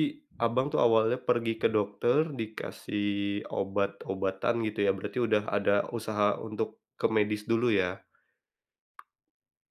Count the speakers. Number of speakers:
one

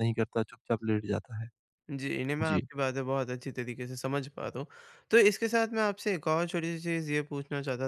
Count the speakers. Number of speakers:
two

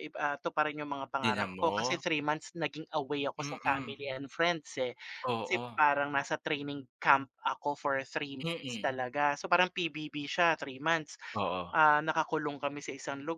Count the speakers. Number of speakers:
two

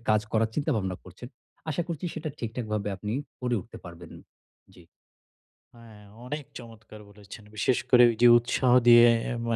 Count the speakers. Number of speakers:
two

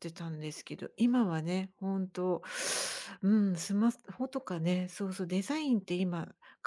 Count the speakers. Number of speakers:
one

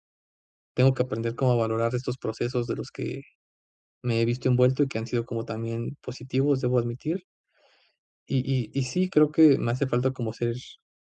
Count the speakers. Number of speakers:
one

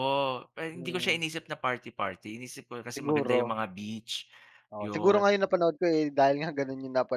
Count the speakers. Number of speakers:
two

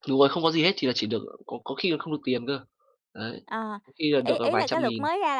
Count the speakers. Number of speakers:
two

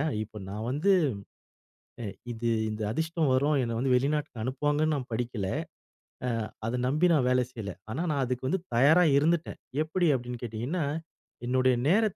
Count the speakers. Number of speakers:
one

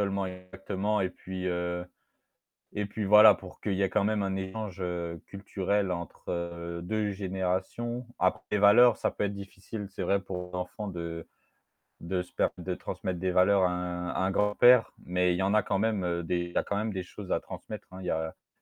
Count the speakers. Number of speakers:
one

